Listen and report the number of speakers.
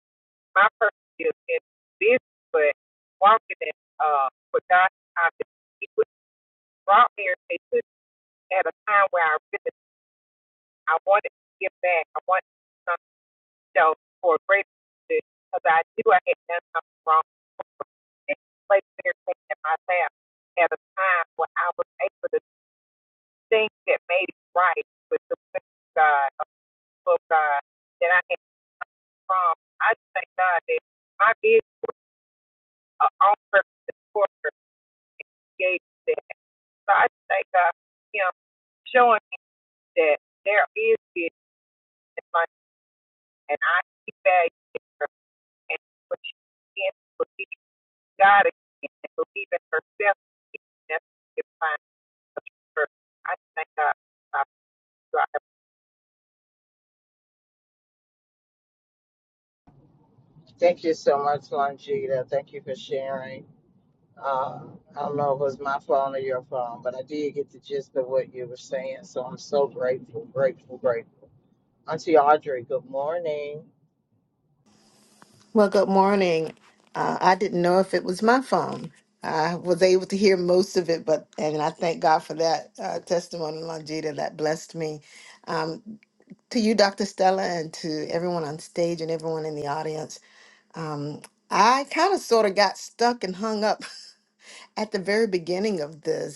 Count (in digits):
3